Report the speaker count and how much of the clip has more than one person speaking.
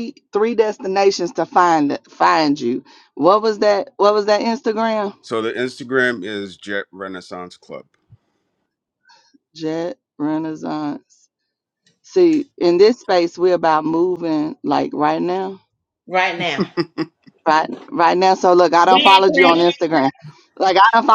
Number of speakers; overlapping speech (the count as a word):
three, about 4%